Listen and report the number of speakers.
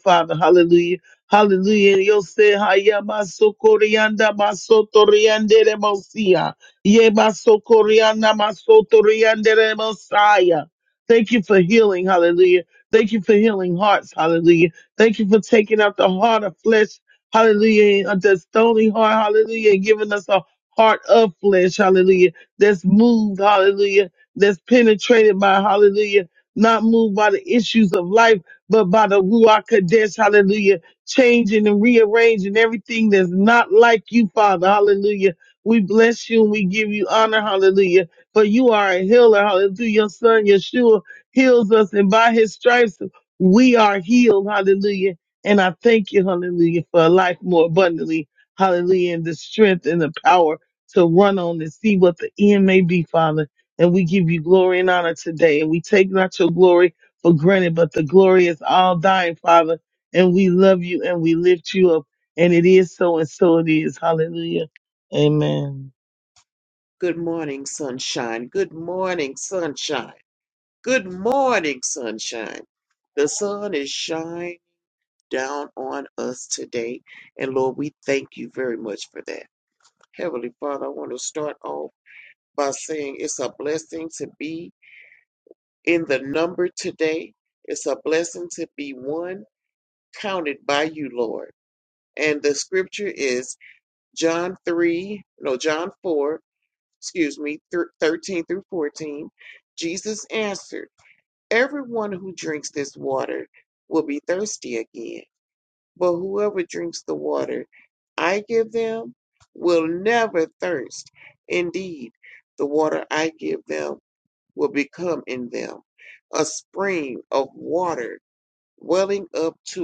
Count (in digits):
2